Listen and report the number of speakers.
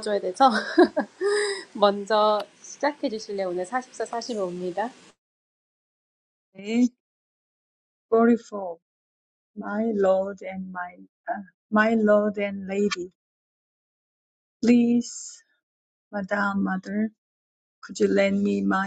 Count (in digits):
2